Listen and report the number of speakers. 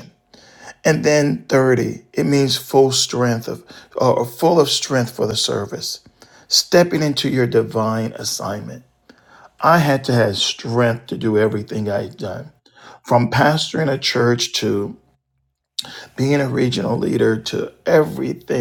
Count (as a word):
one